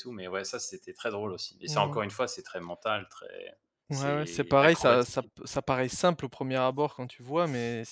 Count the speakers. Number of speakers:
2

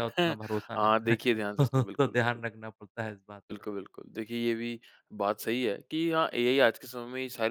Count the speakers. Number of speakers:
2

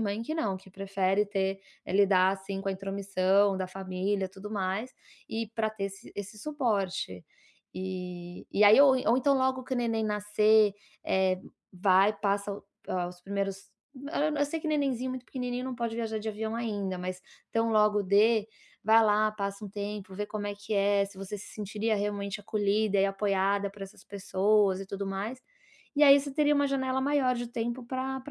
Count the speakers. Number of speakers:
1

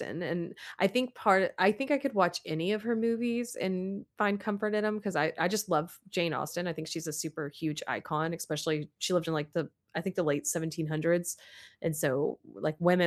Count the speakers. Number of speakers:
1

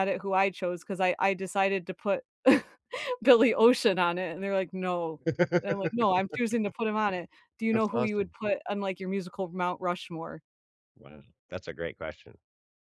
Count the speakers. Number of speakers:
2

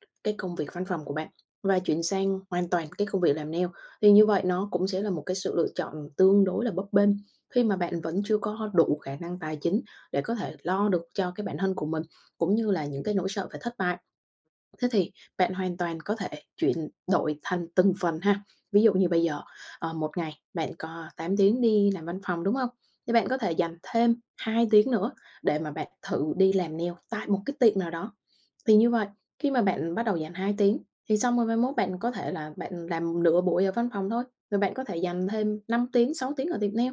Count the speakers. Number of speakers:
1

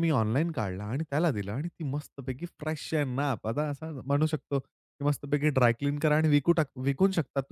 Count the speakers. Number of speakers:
1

